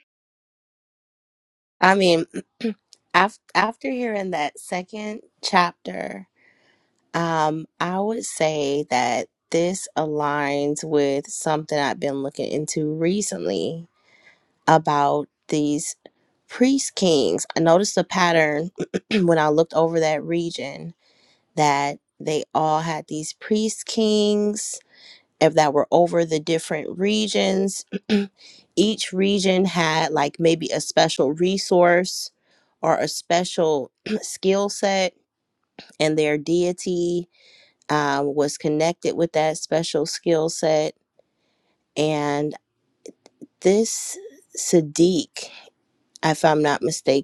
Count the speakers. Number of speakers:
1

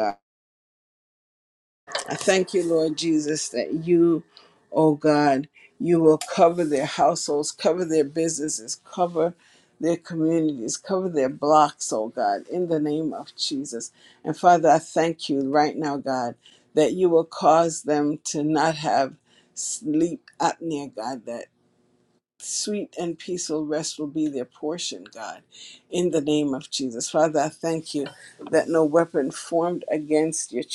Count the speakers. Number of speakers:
1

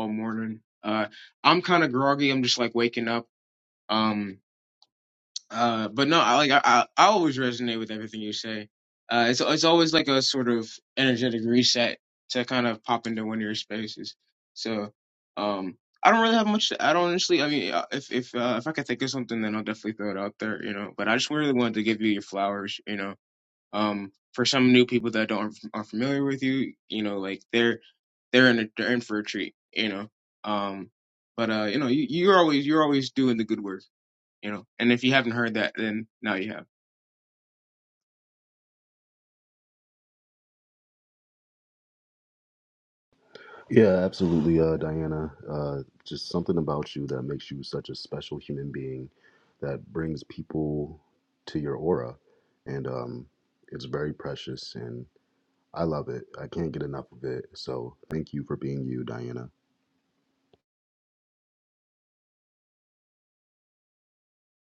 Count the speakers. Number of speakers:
2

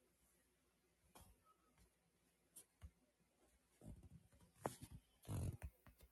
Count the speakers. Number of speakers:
0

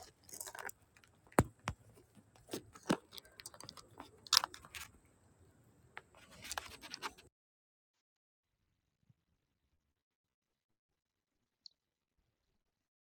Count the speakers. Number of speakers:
0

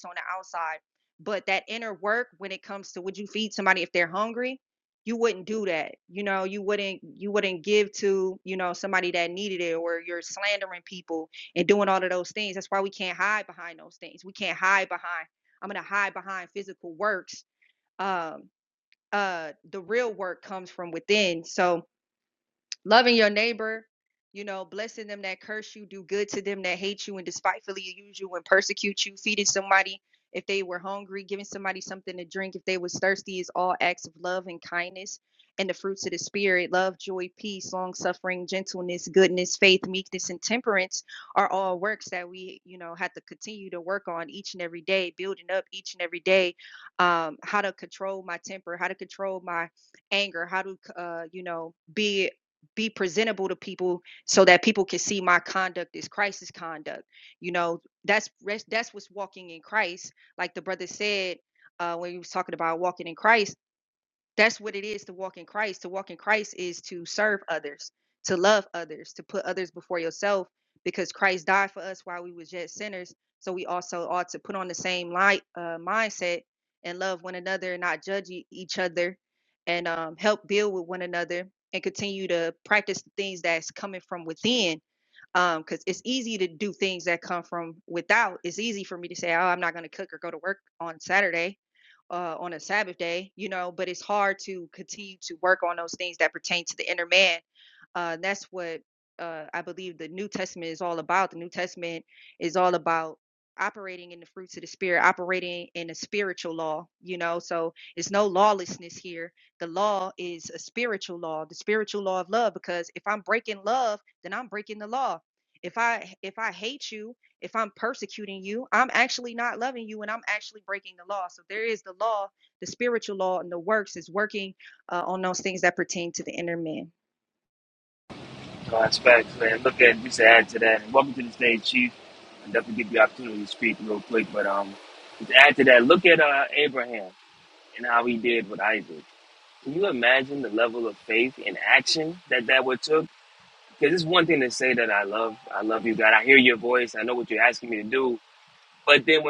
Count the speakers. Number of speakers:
2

